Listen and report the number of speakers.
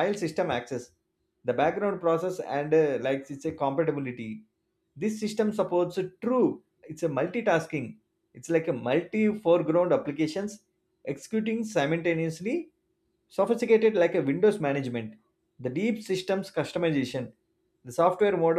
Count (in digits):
1